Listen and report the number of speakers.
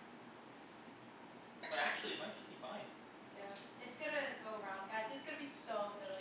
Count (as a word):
two